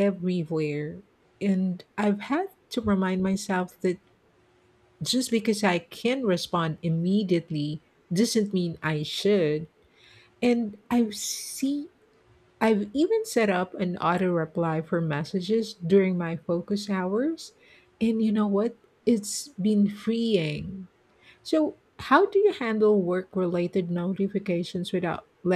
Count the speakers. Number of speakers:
one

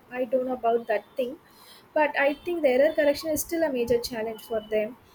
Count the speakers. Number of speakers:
one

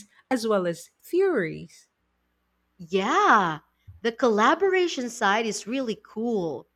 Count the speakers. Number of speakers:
two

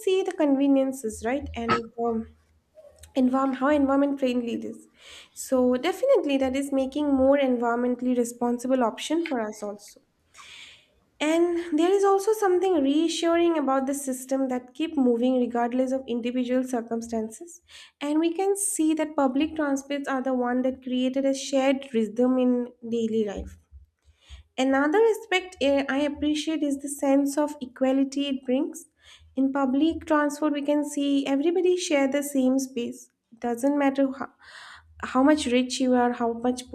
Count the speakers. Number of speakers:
one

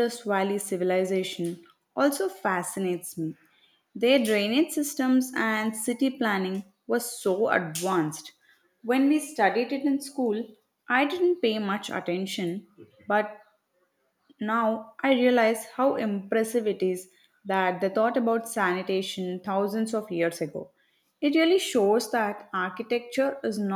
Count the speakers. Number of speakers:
one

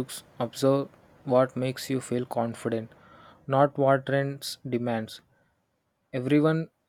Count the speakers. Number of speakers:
one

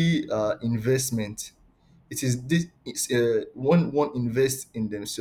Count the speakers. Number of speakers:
one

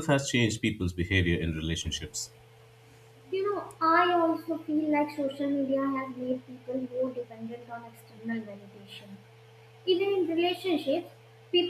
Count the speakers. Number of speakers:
two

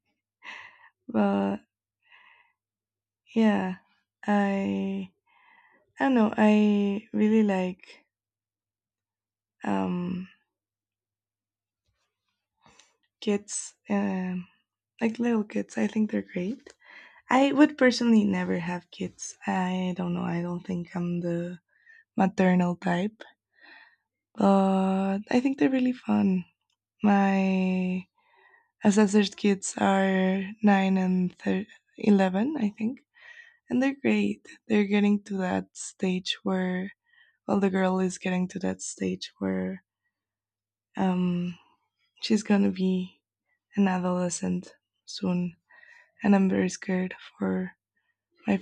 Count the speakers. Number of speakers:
one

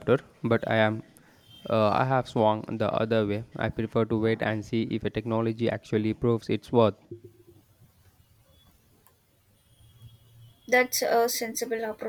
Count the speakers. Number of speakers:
two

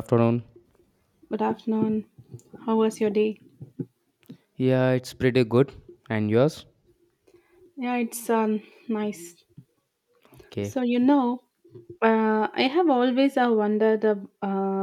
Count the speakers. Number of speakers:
two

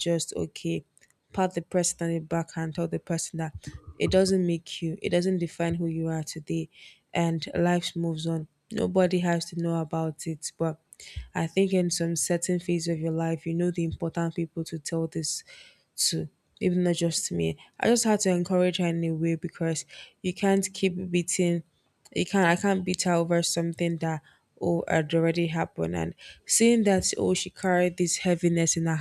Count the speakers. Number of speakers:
one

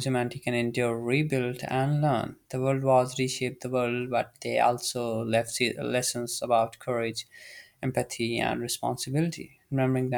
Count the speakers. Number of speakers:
one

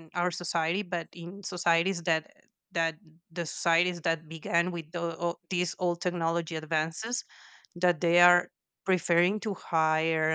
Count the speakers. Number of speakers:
one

